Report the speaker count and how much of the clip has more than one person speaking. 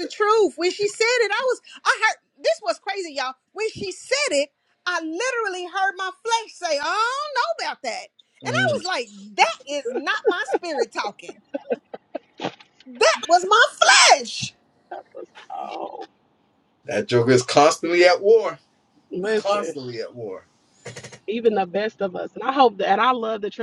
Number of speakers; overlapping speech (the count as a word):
three, about 3%